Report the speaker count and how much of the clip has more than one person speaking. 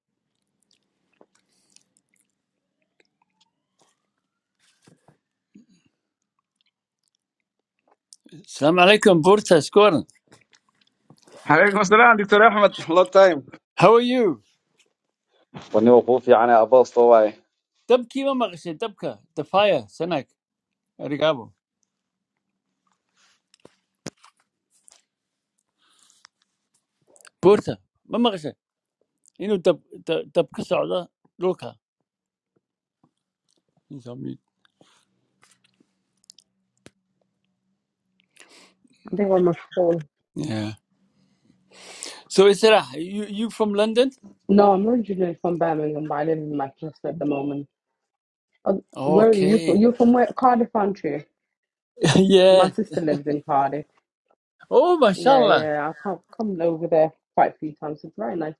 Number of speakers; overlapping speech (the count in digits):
3, about 2%